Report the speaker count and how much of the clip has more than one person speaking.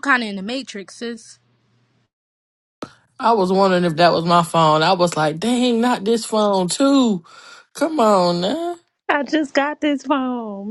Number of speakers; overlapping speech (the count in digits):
3, no overlap